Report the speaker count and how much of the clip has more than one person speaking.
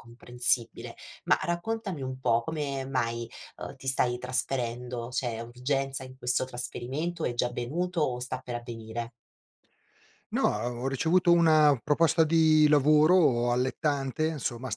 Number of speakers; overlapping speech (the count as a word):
two, no overlap